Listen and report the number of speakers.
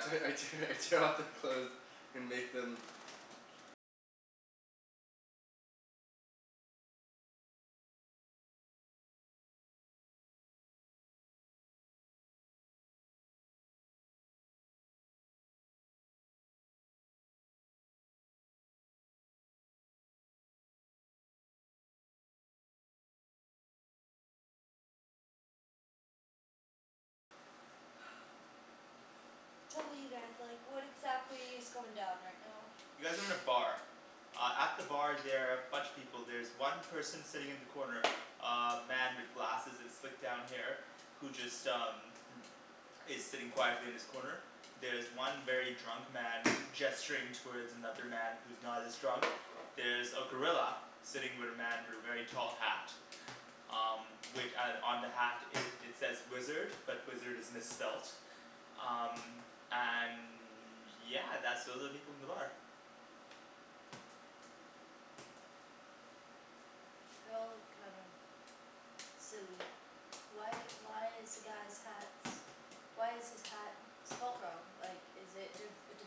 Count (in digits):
3